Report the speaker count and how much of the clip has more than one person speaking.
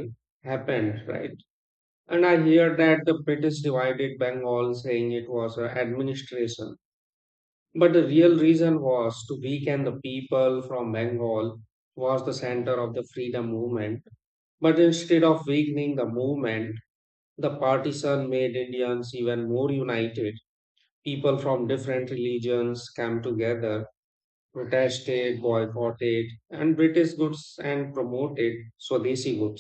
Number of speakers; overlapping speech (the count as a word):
one, no overlap